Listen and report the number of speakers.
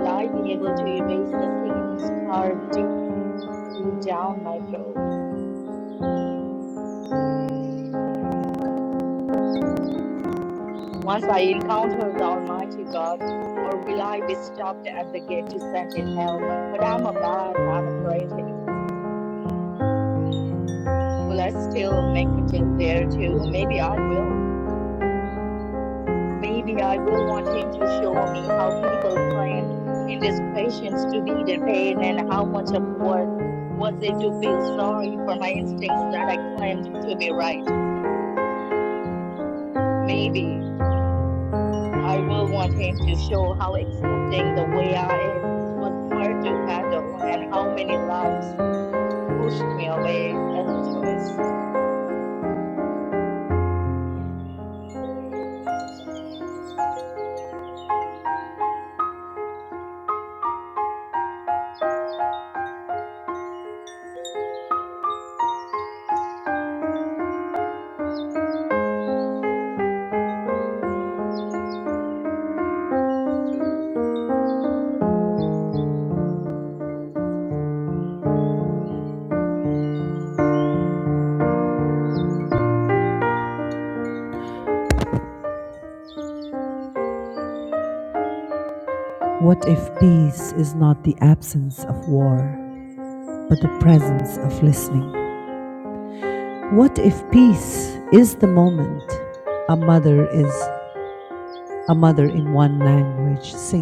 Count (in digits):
2